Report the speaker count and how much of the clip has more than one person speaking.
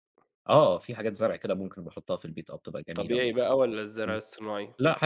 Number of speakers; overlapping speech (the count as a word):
two, about 9%